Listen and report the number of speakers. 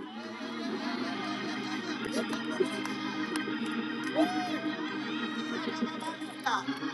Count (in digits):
0